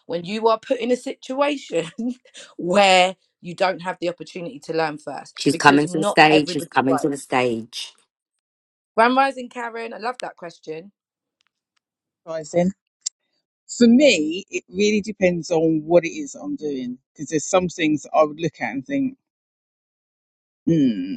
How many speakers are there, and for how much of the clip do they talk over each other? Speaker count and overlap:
three, about 8%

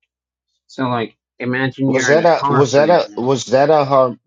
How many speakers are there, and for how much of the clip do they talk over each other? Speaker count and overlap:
two, about 31%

